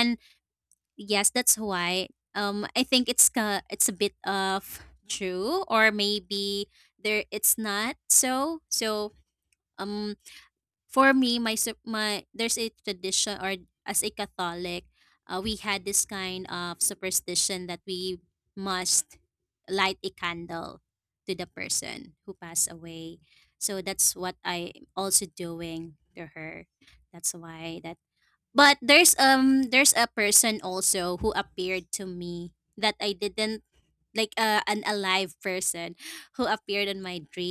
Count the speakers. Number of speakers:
1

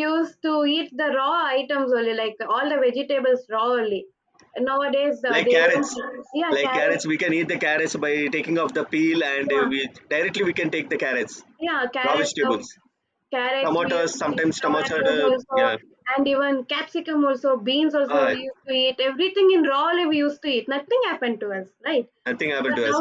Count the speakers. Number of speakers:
2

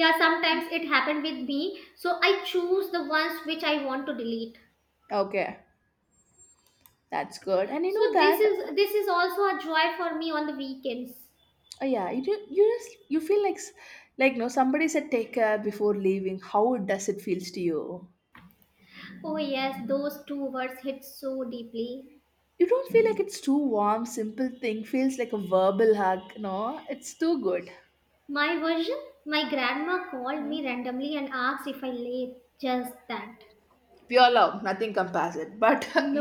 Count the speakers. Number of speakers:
2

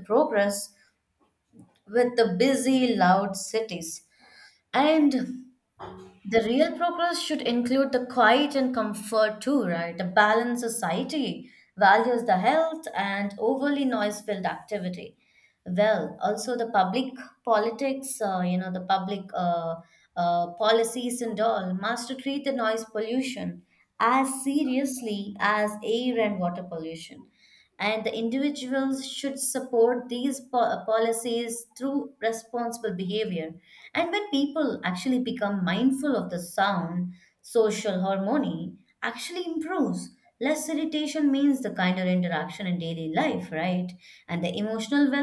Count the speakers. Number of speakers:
1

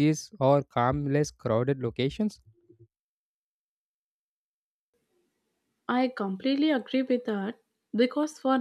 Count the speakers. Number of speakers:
2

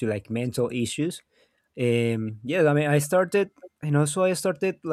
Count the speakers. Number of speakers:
1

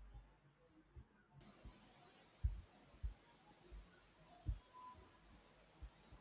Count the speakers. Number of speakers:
0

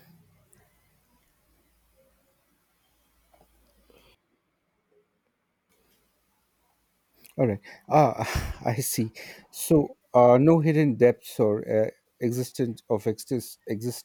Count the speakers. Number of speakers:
1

